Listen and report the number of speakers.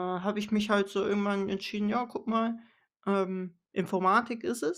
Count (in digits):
1